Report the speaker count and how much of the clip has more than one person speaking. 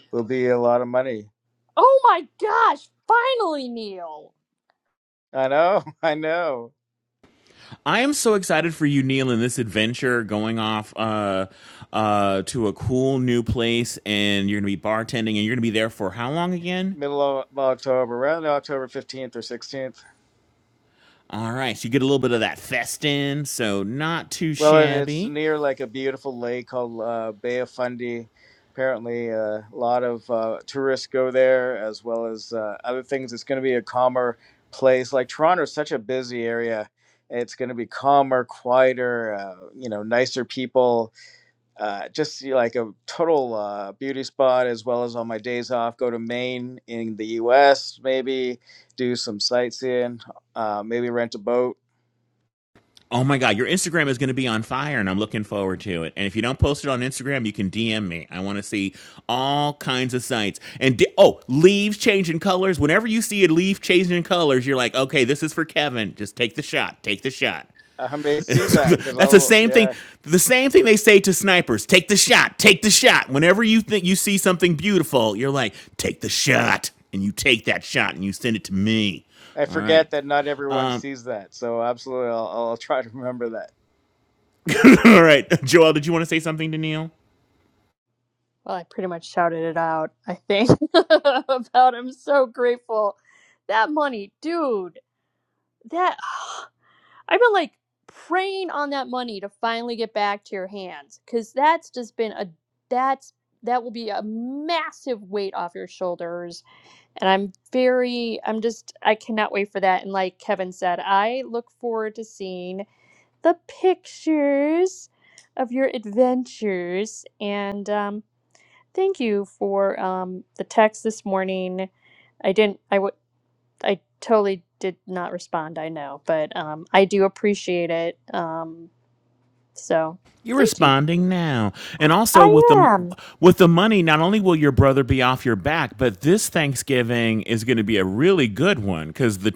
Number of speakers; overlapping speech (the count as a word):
three, about 2%